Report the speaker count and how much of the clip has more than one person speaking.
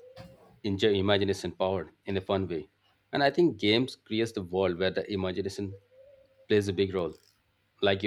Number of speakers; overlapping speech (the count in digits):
1, no overlap